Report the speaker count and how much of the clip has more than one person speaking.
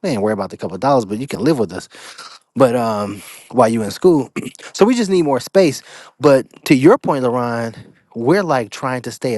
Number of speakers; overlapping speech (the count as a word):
one, no overlap